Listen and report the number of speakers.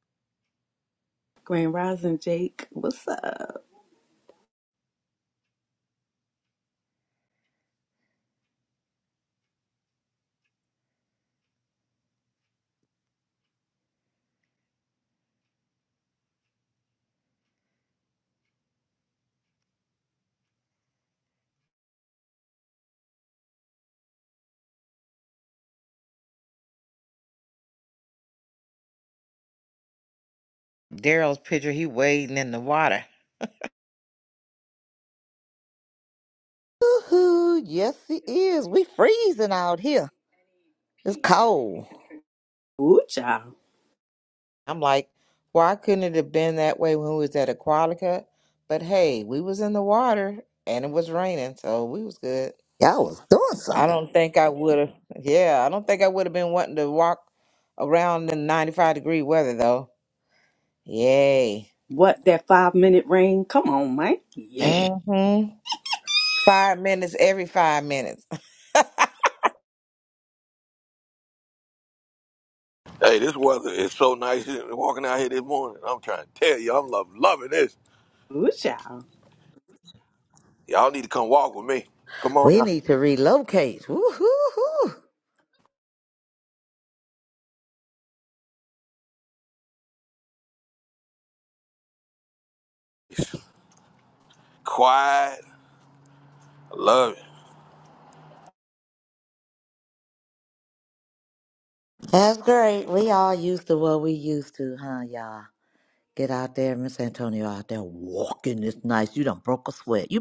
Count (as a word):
four